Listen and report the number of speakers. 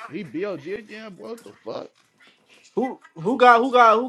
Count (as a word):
two